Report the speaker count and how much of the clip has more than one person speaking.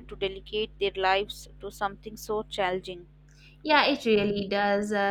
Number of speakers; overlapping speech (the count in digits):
2, no overlap